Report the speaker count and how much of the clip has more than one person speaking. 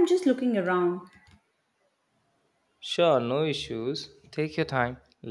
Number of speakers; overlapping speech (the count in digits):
2, no overlap